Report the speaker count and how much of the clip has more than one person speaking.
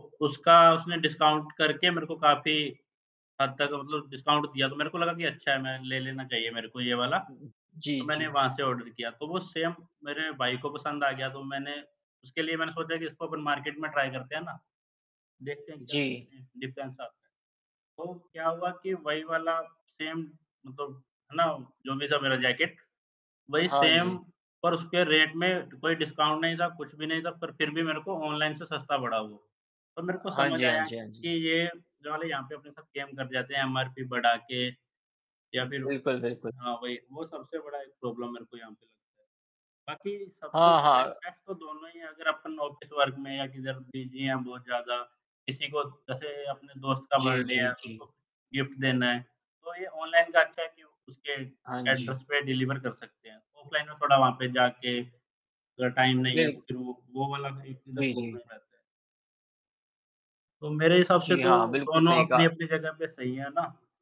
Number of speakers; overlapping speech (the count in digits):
2, about 8%